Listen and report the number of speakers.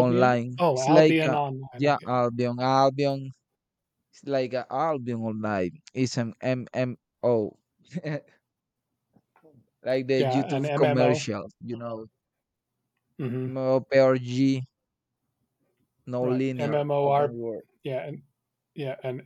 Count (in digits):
2